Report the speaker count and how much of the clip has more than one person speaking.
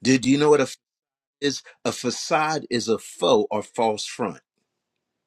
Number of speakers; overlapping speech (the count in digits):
1, no overlap